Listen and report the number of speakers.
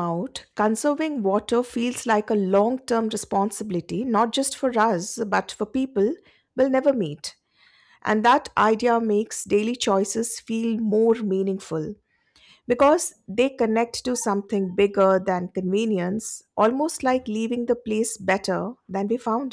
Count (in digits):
1